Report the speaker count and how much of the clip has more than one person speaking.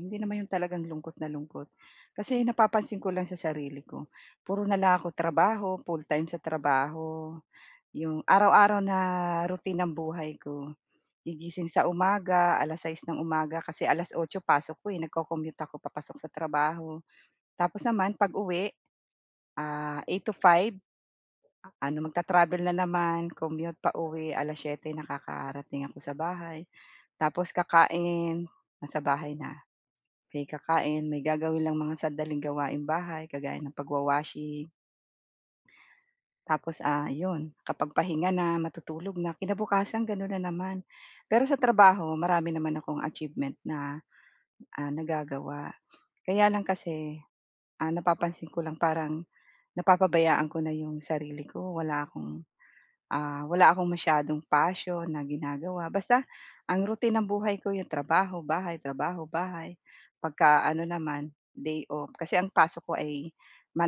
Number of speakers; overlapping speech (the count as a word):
one, no overlap